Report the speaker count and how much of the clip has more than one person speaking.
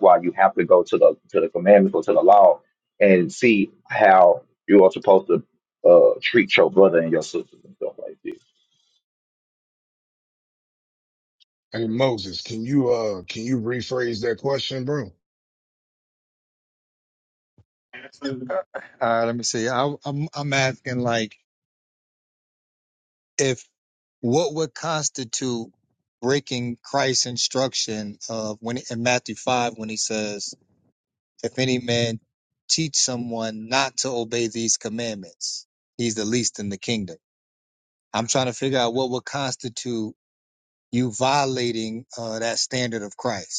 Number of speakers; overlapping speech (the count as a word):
three, no overlap